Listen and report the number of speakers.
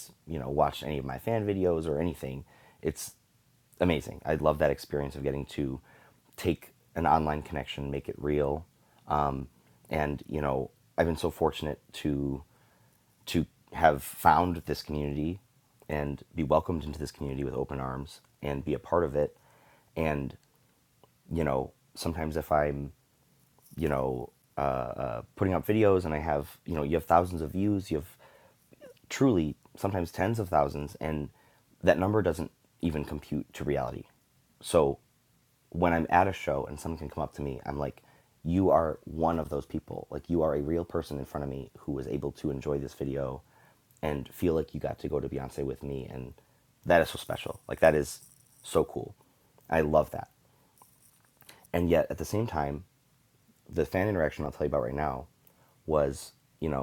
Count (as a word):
one